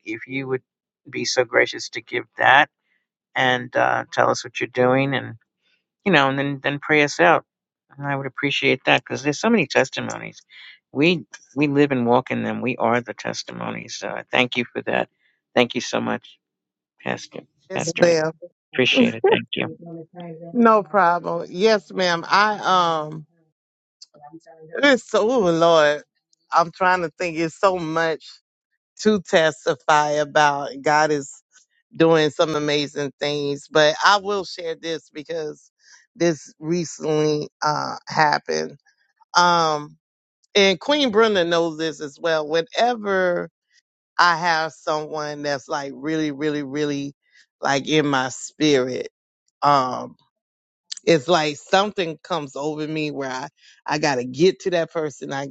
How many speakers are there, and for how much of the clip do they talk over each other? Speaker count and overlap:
two, about 1%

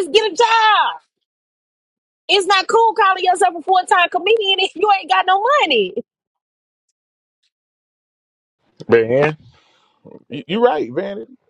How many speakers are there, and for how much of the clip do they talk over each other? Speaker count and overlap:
two, no overlap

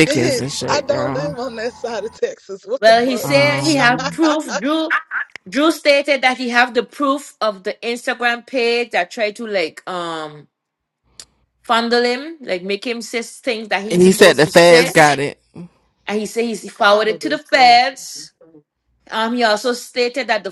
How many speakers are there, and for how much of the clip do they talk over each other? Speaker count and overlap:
three, about 22%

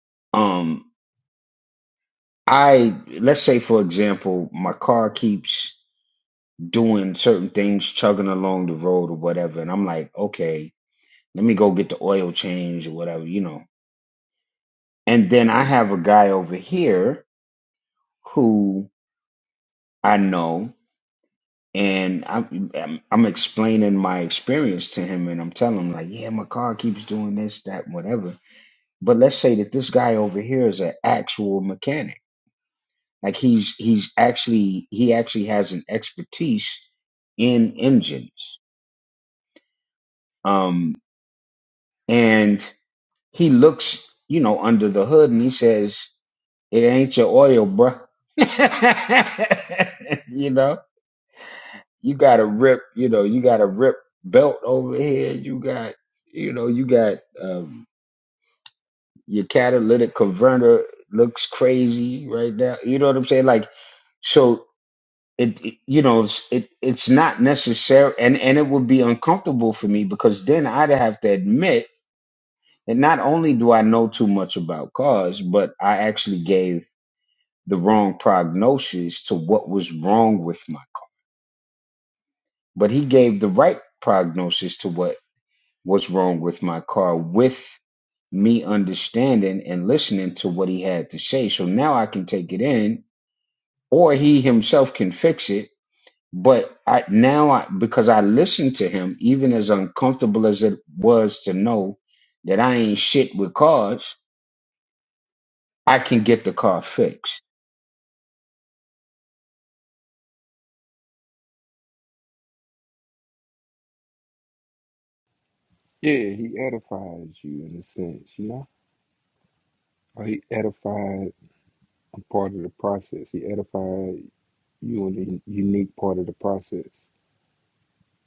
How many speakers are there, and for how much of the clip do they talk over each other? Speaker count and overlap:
two, no overlap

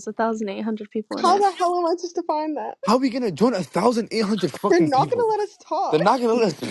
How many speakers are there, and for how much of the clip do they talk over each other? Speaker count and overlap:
three, about 15%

